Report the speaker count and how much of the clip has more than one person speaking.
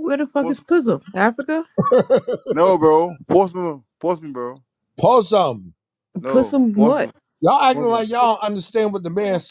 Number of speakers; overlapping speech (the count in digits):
3, about 13%